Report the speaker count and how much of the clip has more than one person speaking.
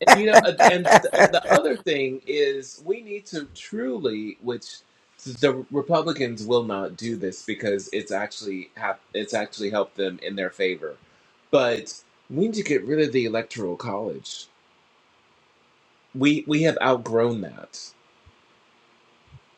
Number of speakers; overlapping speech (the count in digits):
1, no overlap